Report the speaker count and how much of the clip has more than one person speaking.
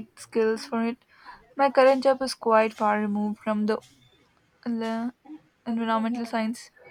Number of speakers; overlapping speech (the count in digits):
1, no overlap